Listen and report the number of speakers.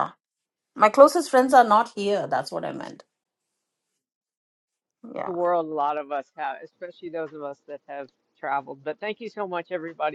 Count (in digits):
2